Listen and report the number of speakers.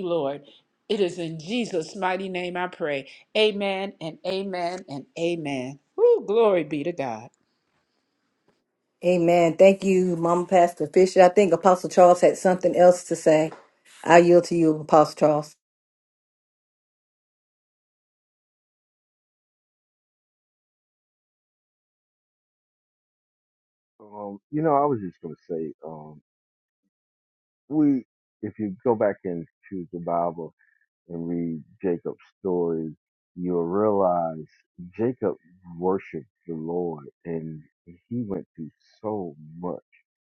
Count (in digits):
3